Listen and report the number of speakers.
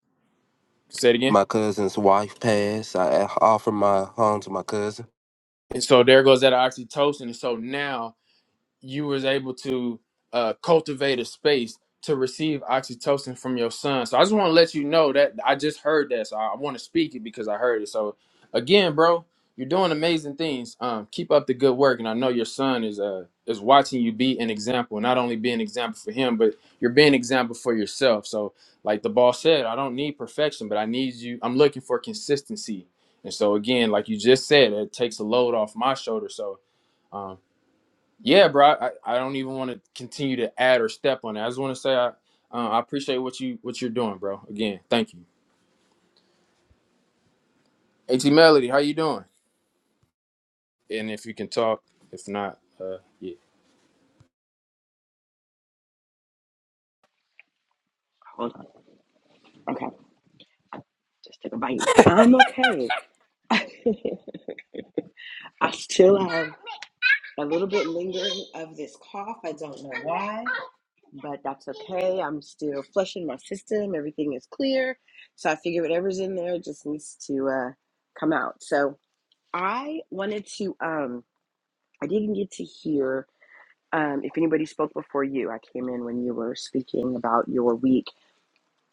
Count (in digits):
3